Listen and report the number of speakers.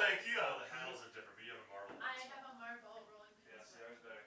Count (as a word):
three